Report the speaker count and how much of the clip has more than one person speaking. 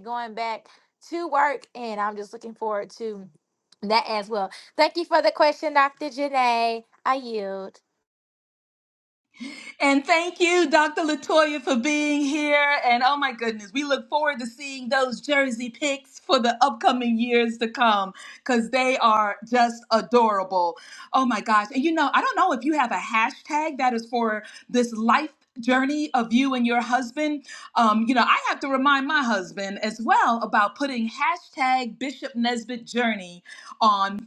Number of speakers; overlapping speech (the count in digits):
2, no overlap